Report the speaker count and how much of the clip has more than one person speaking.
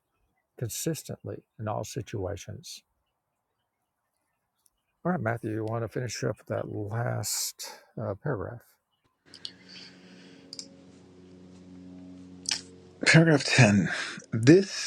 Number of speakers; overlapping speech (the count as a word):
two, no overlap